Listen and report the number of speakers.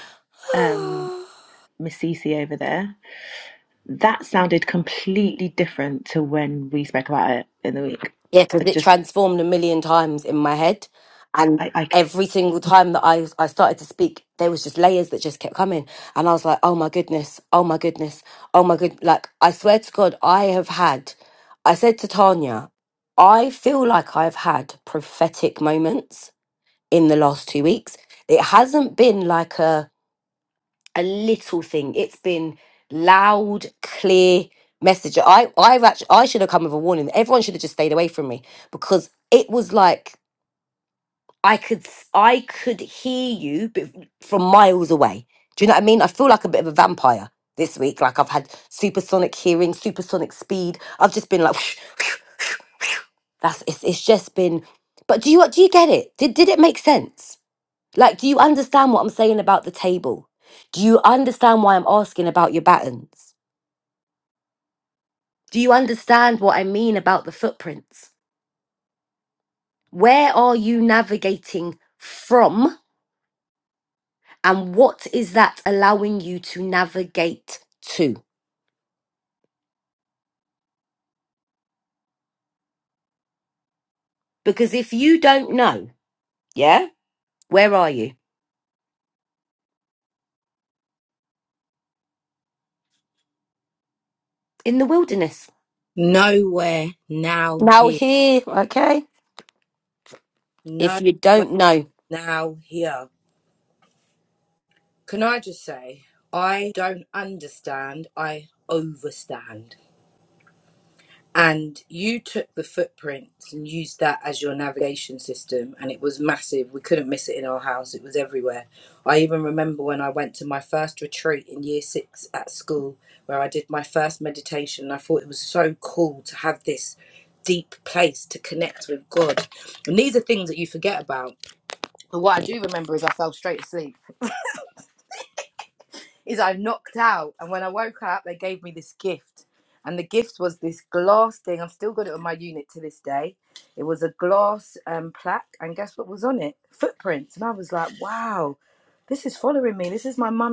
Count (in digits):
3